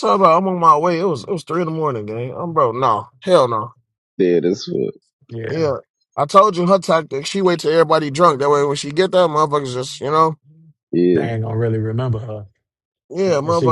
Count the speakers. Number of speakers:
3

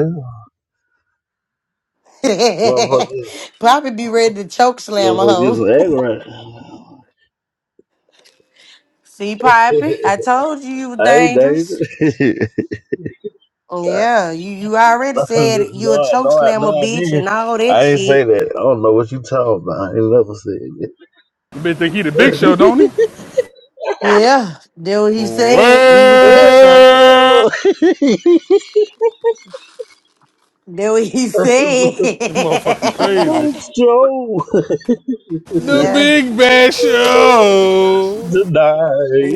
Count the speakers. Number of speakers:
3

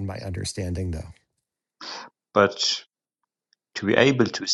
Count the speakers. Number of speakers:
2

